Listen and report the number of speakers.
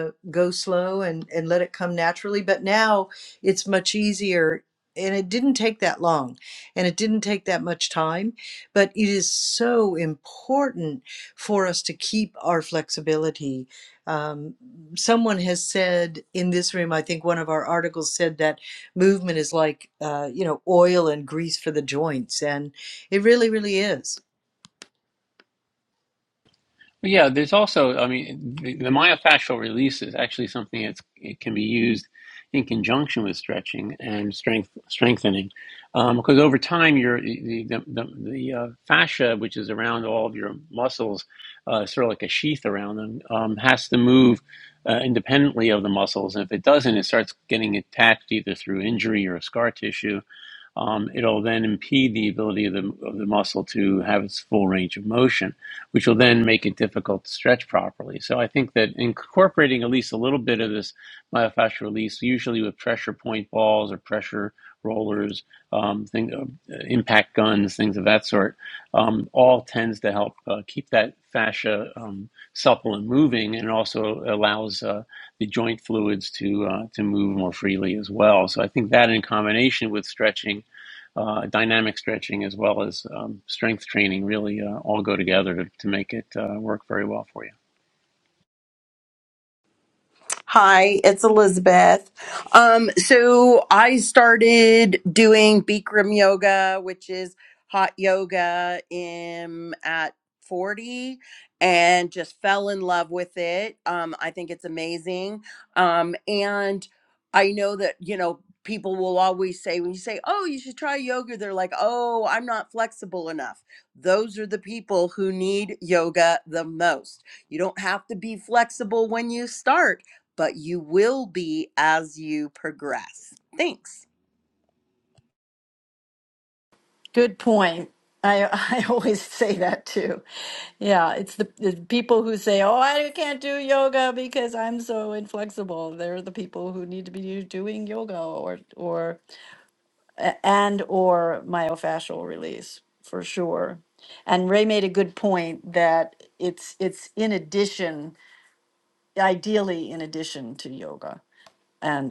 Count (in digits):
4